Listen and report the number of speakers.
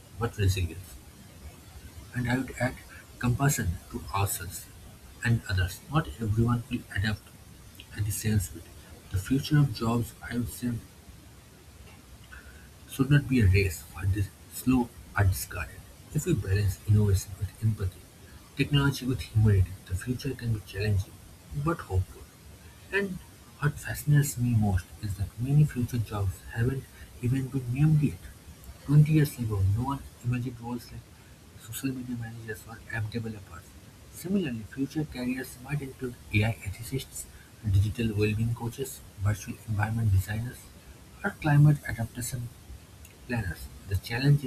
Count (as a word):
one